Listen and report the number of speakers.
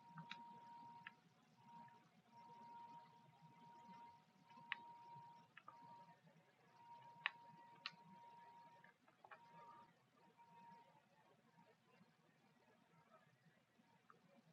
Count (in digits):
0